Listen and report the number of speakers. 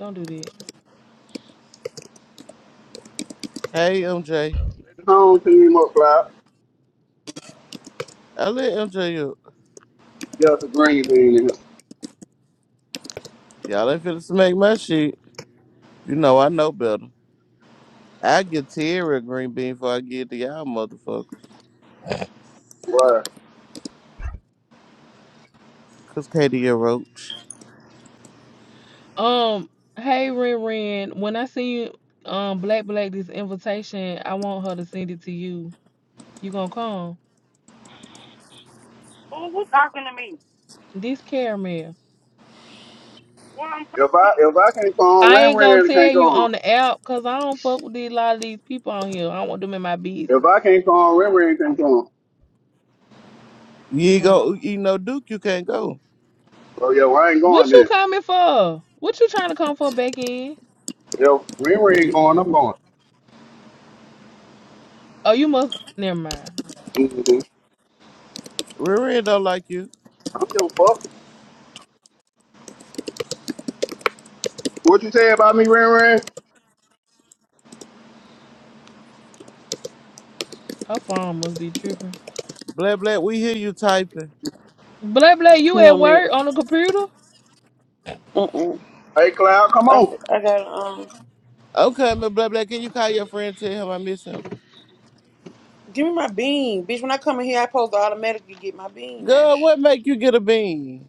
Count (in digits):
5